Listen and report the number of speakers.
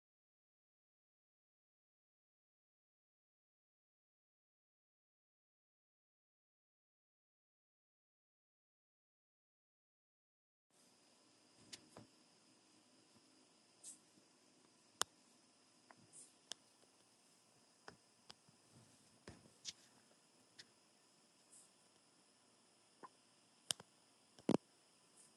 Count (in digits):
0